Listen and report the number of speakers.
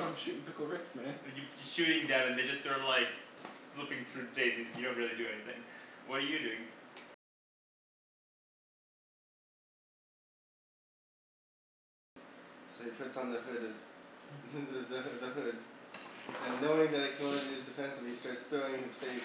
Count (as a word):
three